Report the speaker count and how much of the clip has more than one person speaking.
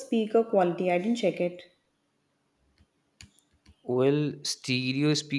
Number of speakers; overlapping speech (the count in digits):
2, no overlap